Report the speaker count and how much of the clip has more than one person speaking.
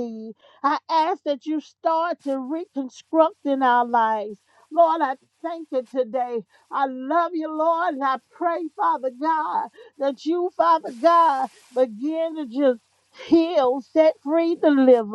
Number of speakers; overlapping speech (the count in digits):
1, no overlap